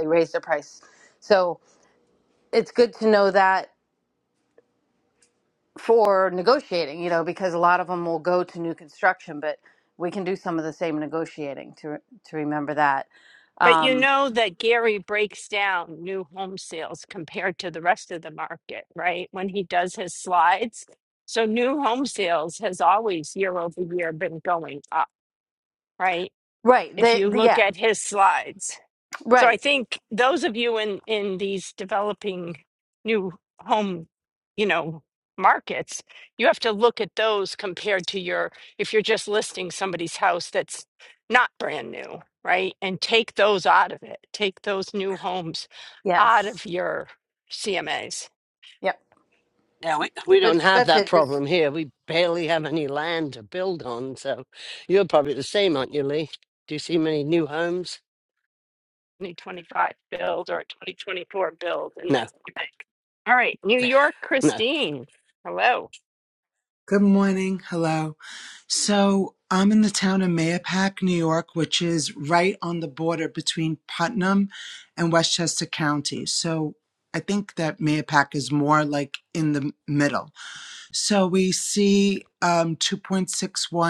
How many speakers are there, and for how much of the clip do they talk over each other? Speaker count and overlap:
four, about 3%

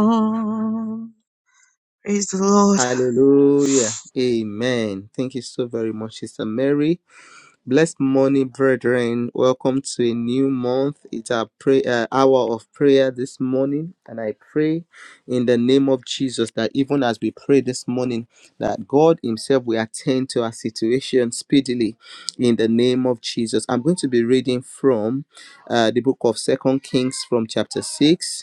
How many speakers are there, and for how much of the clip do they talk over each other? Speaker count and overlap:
two, under 1%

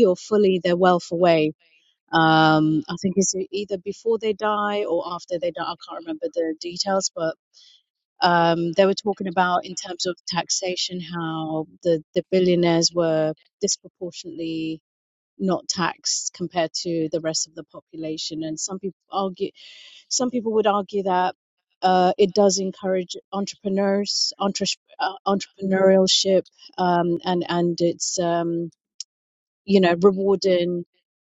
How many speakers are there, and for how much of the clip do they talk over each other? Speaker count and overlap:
one, no overlap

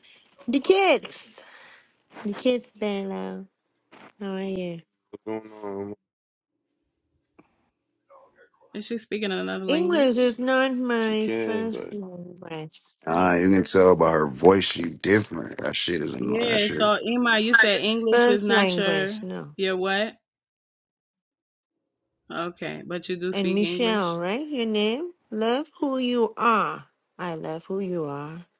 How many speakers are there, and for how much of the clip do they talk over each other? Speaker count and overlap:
four, about 15%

